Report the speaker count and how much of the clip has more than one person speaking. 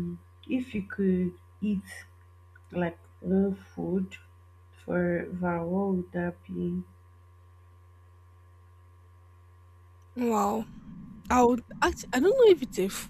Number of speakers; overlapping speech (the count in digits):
2, no overlap